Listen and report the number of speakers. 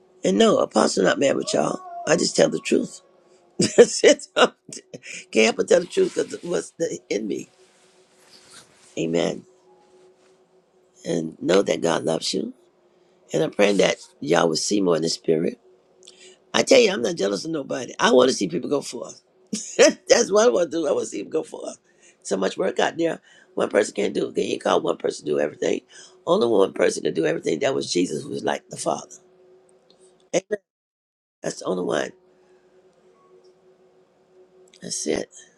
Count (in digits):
1